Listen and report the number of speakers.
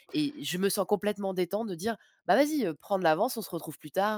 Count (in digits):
1